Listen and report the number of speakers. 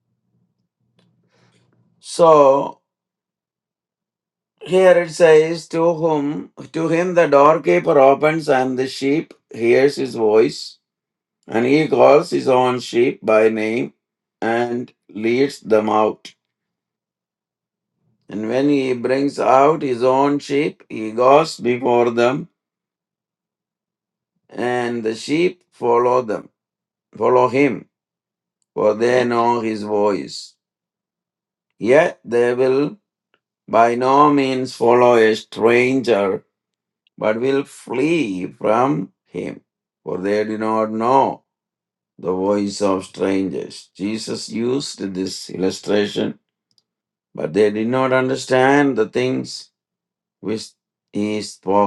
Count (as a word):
one